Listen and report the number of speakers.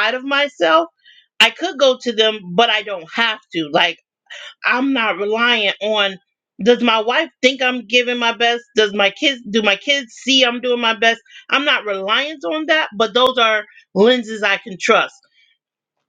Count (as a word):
one